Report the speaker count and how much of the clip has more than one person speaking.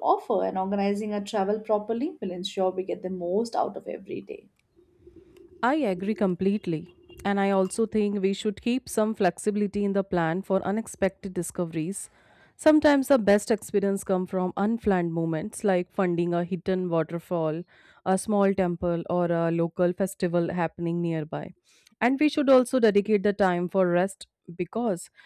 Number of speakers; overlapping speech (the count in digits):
2, no overlap